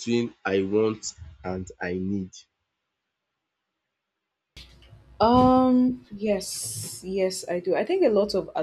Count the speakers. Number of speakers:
2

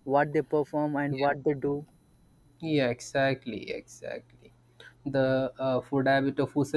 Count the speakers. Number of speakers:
2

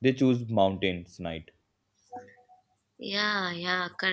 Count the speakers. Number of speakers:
2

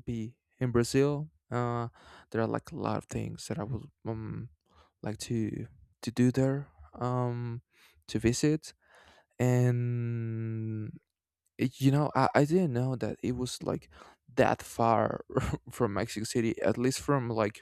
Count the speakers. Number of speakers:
1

